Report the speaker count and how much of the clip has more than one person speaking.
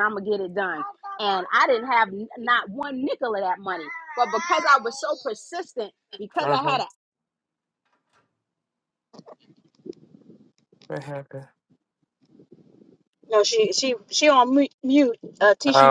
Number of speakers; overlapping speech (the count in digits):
3, about 4%